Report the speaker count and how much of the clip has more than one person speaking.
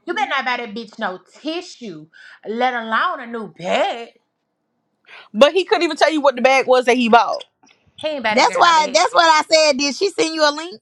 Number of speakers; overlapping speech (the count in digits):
3, about 6%